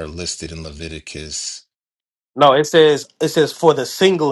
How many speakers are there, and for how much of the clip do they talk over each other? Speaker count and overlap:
2, no overlap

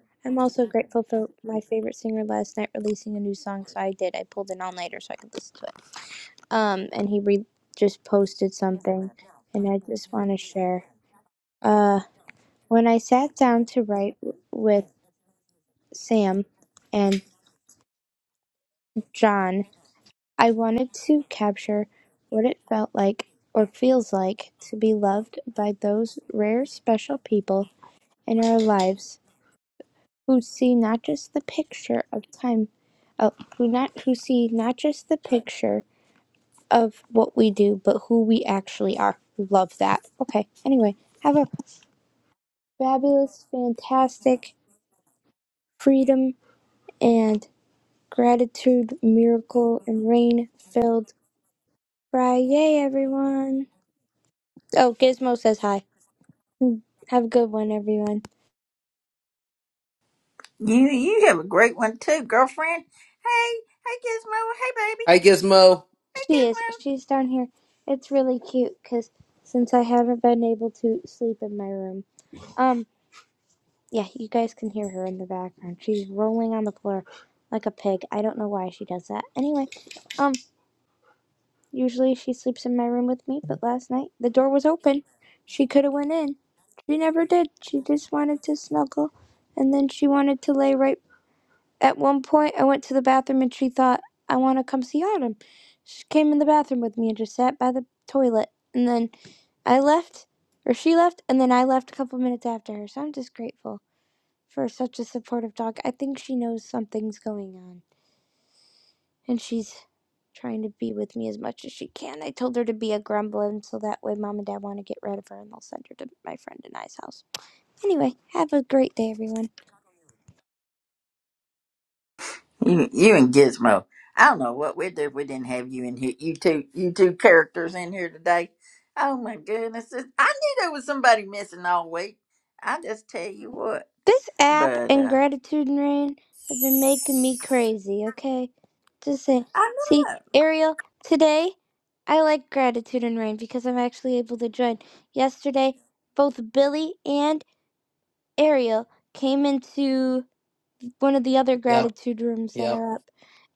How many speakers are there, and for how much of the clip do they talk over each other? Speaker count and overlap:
3, about 1%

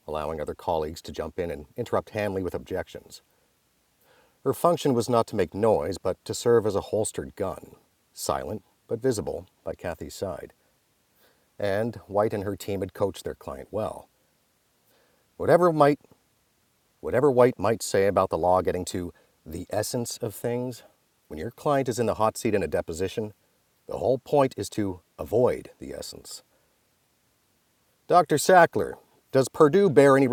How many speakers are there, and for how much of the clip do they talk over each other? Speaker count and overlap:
1, no overlap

